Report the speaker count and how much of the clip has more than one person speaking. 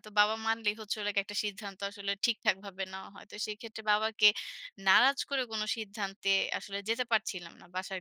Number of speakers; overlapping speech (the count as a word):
one, no overlap